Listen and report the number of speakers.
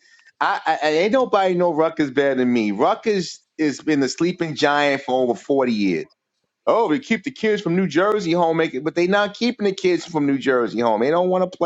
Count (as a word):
one